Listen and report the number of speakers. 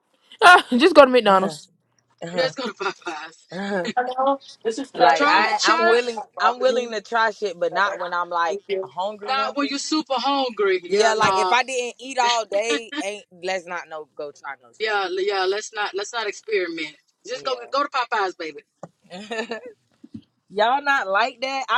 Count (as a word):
four